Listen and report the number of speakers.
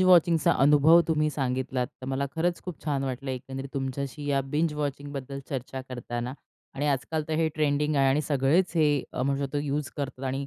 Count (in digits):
1